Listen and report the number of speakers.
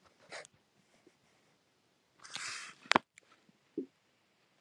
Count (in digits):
0